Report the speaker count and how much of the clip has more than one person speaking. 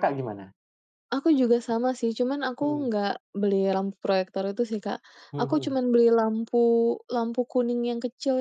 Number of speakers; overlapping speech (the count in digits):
2, about 7%